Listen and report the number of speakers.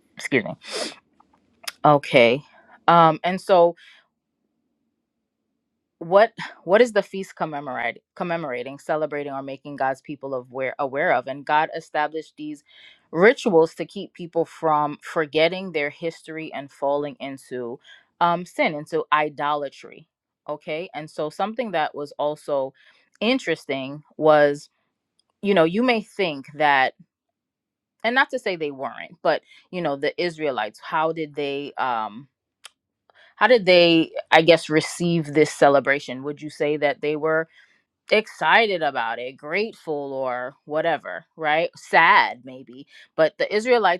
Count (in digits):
1